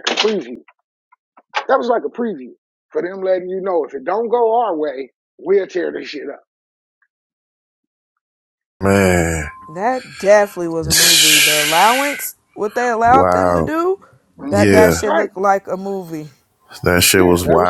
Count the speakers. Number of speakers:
3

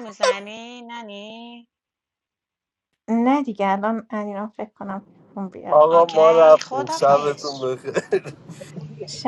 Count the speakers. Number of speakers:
3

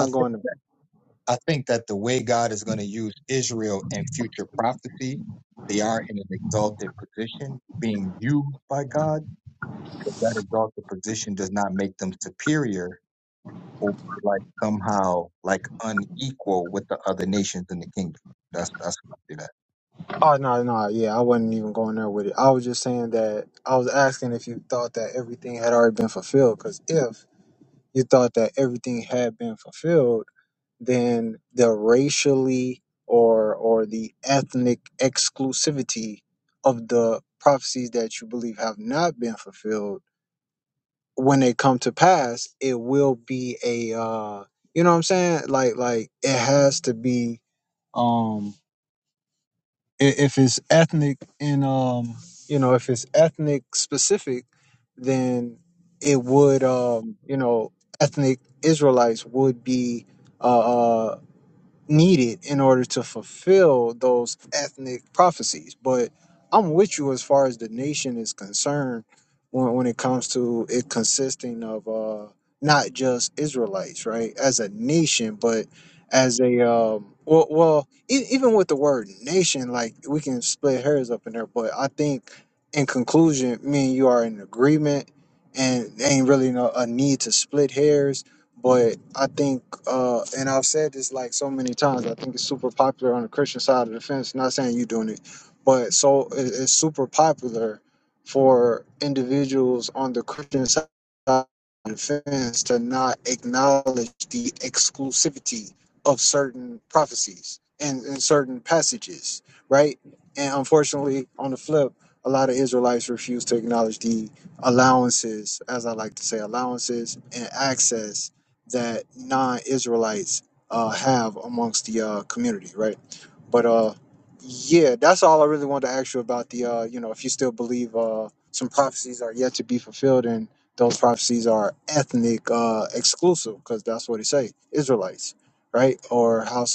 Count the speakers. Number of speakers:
2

